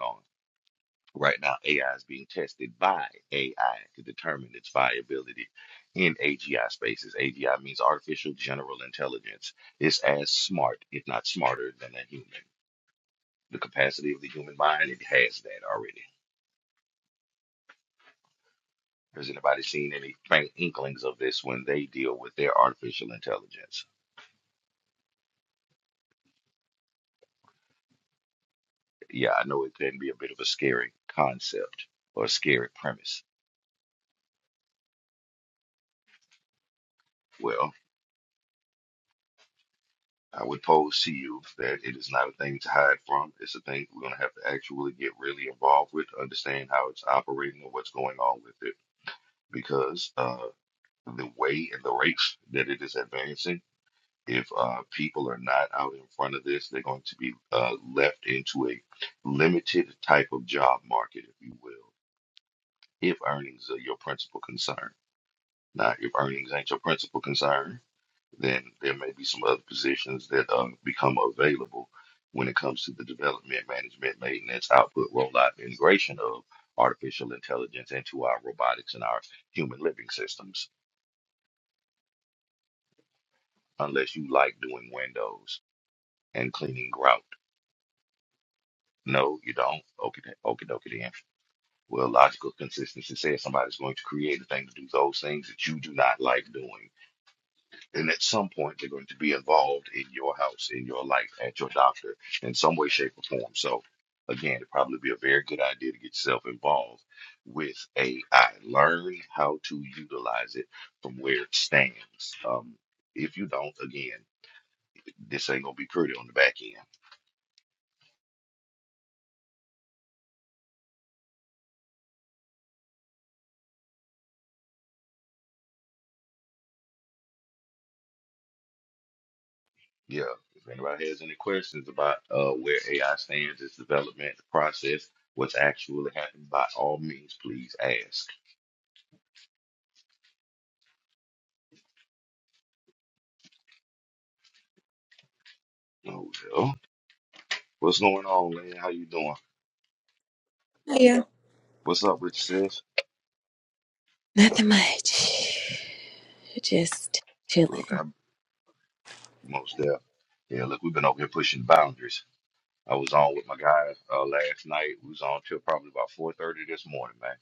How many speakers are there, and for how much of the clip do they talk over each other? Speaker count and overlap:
2, under 1%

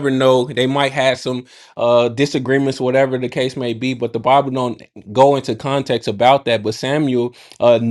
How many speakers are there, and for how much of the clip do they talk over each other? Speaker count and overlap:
1, no overlap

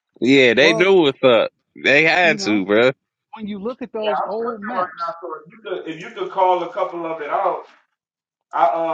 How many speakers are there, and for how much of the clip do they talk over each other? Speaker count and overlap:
3, about 18%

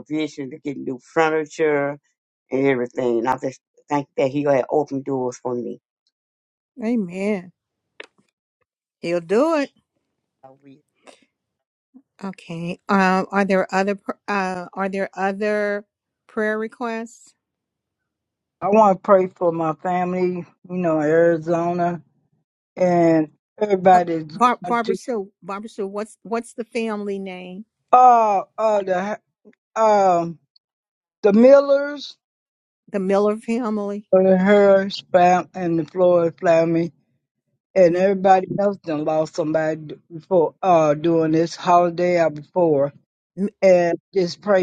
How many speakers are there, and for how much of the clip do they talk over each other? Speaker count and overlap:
3, about 2%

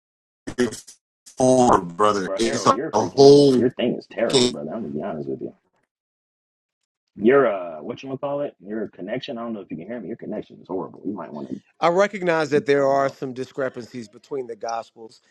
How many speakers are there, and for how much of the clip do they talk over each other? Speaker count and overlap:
3, about 13%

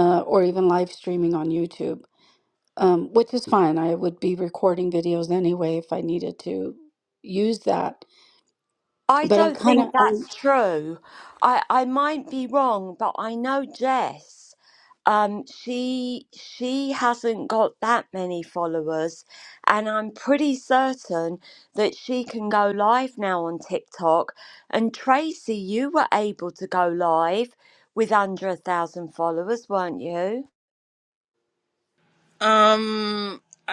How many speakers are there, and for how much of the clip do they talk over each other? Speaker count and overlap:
3, about 3%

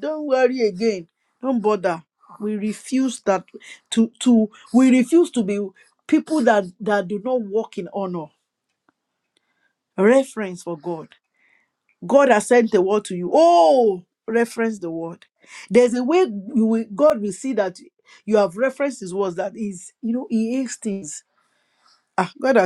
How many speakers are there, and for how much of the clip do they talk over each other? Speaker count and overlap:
1, no overlap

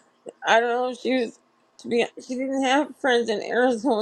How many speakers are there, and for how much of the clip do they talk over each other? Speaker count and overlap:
1, no overlap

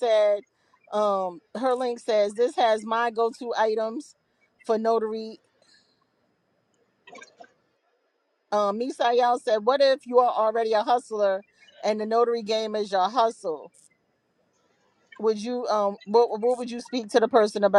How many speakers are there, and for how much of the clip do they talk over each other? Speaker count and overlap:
1, no overlap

